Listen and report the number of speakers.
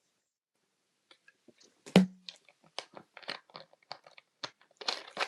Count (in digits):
0